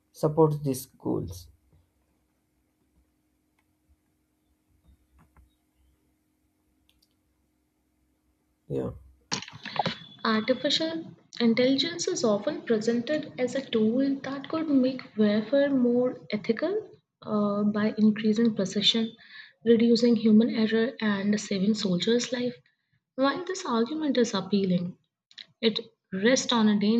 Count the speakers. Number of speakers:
2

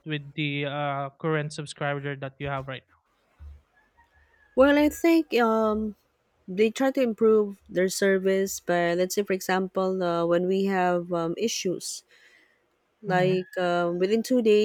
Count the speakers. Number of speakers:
2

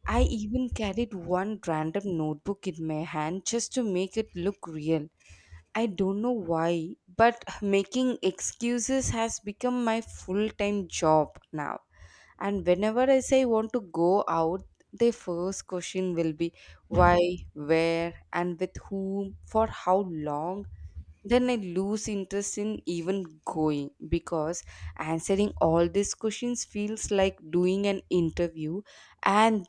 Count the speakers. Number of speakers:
1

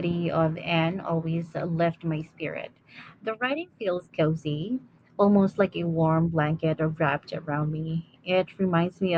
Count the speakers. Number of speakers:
1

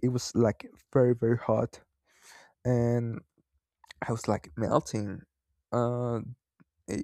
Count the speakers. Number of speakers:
1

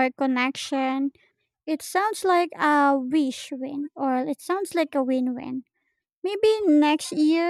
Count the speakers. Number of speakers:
1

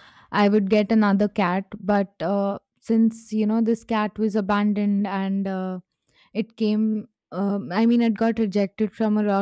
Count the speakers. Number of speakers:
1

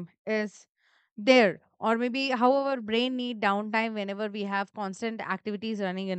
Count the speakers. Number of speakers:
1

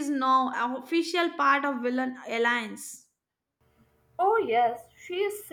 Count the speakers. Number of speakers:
2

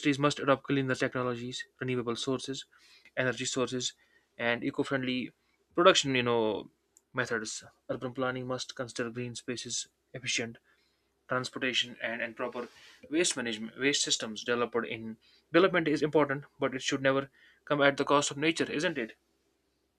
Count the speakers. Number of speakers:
1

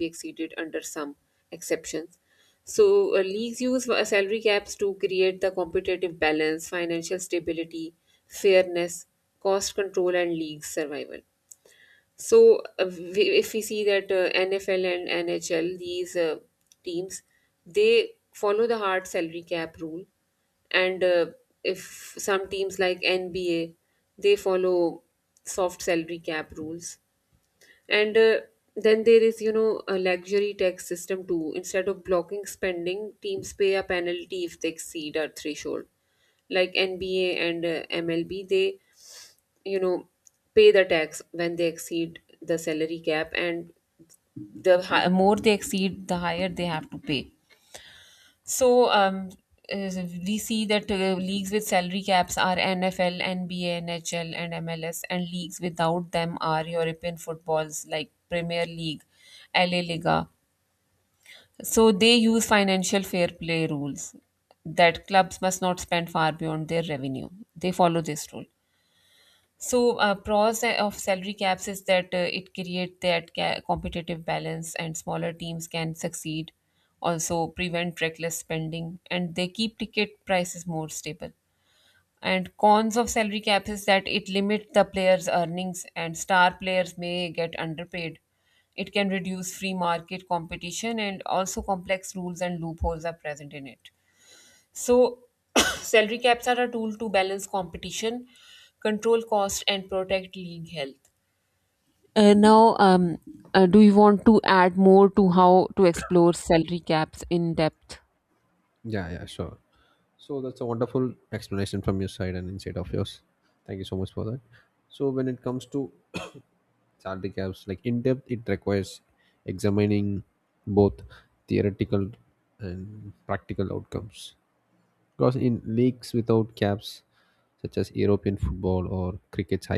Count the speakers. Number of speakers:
2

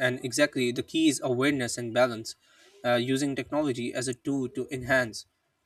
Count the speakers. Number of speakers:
1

